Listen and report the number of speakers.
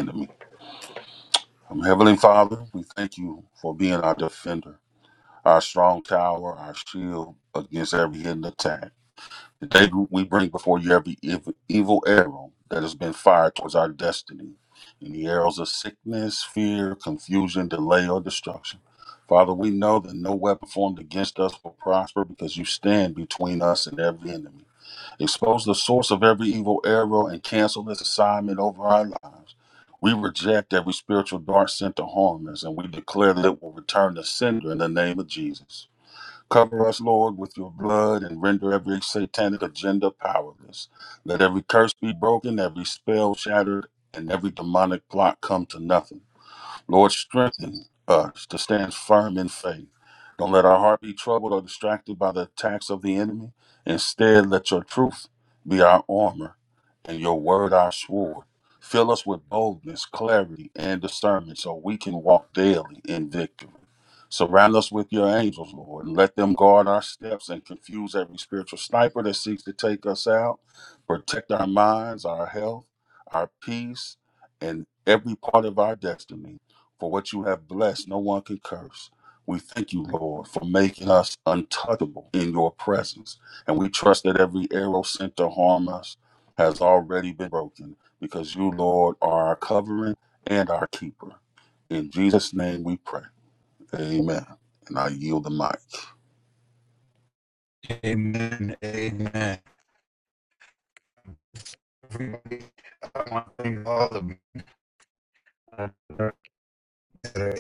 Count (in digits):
2